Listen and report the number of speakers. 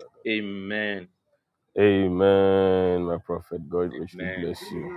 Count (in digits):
2